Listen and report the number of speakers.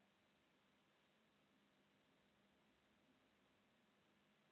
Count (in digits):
0